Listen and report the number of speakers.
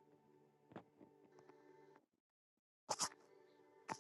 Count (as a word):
zero